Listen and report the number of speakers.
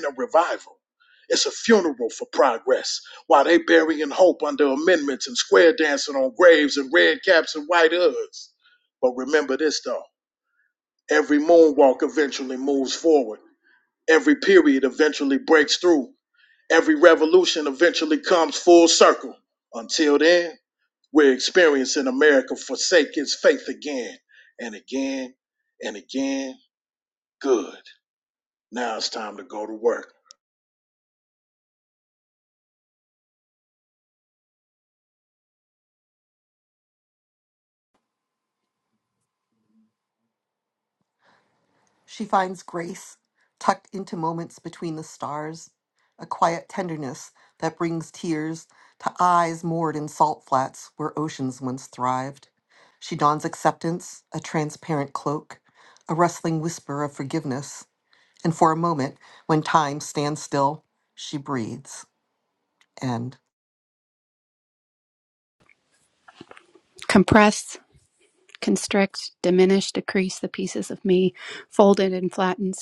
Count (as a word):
three